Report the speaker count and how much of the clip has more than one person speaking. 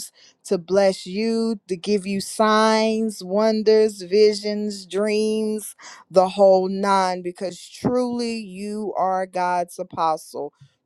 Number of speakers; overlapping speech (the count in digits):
1, no overlap